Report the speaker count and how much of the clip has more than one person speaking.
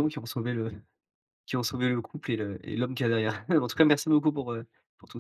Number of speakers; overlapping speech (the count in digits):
1, no overlap